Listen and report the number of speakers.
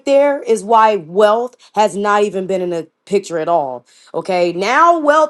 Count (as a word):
one